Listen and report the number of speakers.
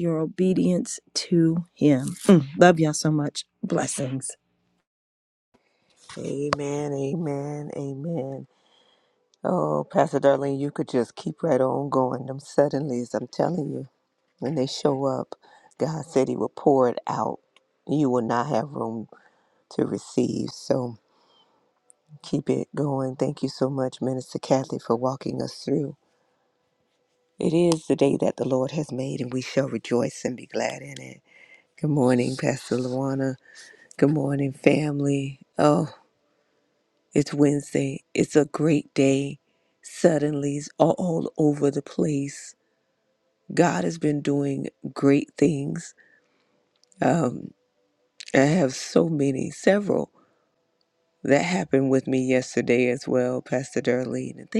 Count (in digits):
2